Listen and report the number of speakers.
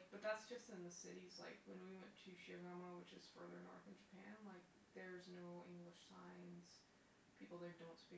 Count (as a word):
one